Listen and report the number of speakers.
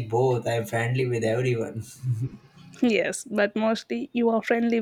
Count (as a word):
two